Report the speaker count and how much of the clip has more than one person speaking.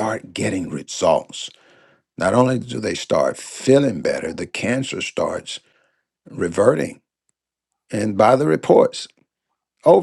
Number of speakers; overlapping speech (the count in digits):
1, no overlap